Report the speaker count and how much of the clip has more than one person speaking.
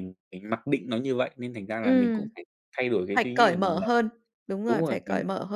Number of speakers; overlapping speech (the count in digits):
2, about 32%